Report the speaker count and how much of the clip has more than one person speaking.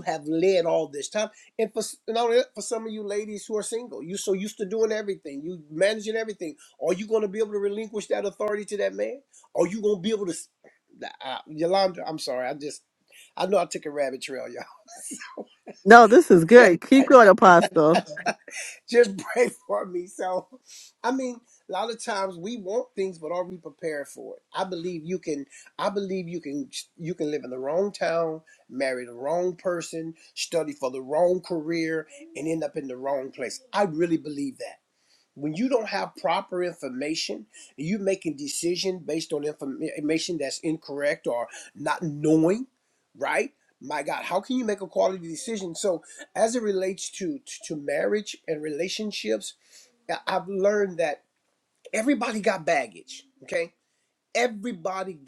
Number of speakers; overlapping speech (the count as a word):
two, no overlap